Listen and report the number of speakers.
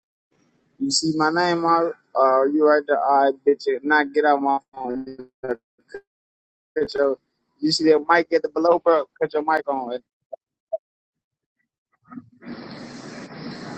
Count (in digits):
1